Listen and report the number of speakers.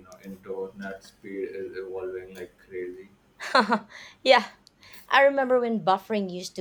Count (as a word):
two